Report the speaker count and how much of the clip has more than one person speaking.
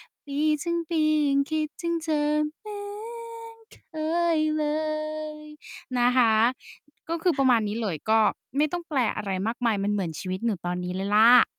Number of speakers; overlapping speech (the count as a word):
one, no overlap